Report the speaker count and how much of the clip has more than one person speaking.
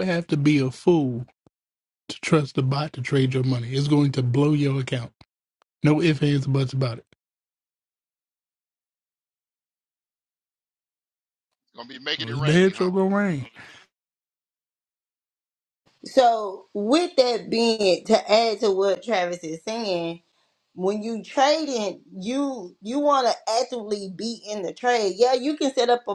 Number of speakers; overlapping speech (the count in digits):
3, about 3%